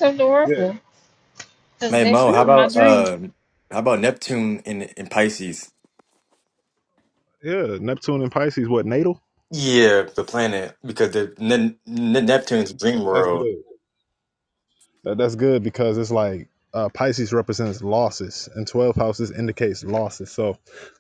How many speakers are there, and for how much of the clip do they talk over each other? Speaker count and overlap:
3, about 8%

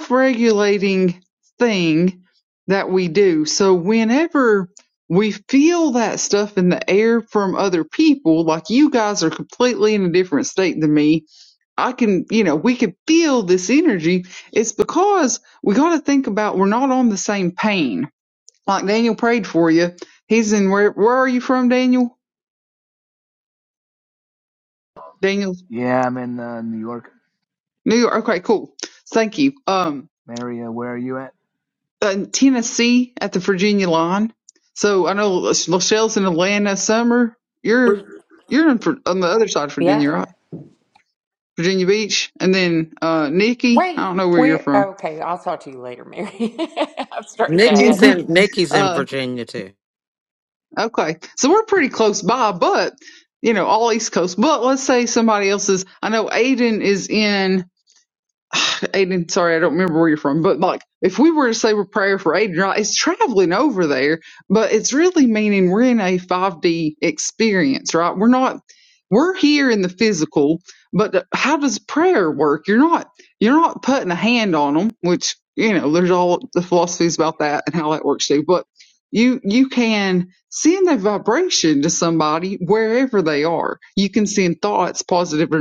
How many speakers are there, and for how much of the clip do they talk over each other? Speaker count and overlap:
4, about 4%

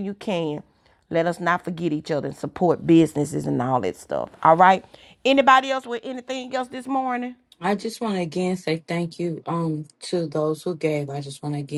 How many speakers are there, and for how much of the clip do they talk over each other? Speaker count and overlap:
2, no overlap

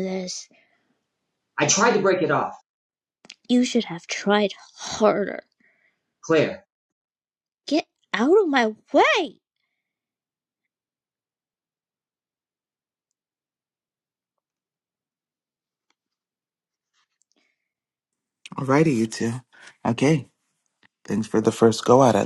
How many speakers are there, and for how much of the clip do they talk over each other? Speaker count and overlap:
3, no overlap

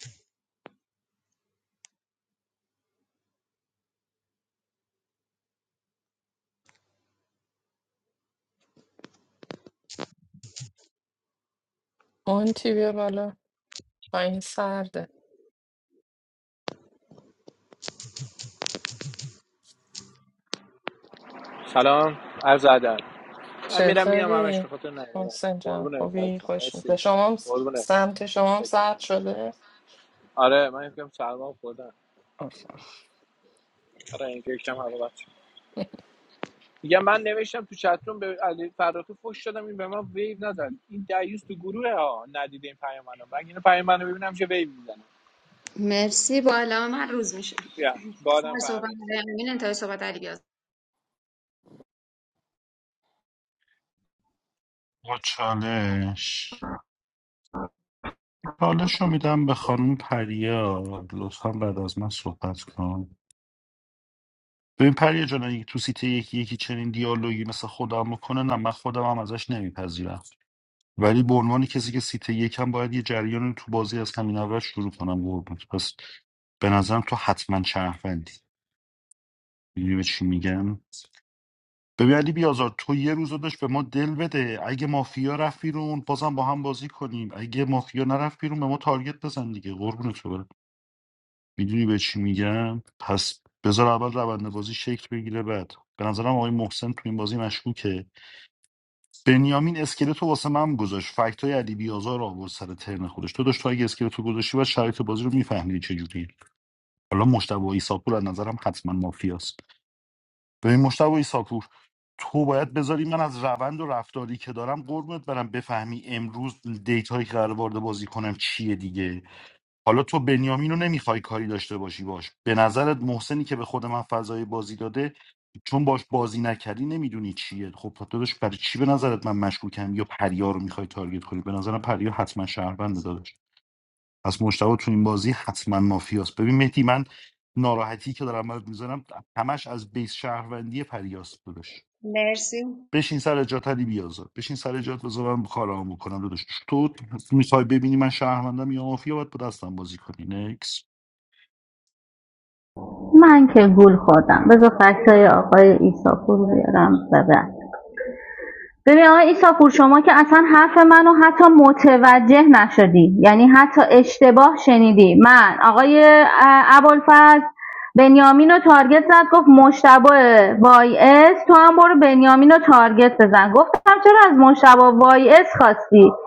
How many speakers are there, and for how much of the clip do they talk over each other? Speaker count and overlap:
5, about 2%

